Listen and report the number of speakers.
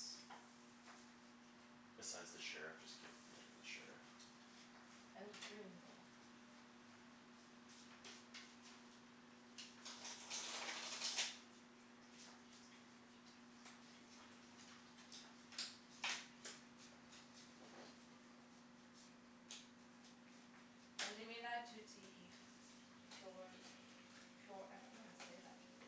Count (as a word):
two